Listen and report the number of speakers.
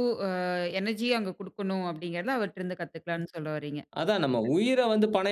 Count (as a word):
two